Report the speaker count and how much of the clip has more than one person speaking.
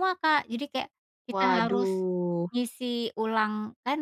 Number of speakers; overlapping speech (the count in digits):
2, about 15%